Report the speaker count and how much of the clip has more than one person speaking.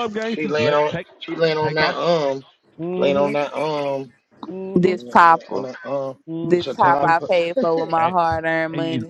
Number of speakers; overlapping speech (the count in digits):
3, about 36%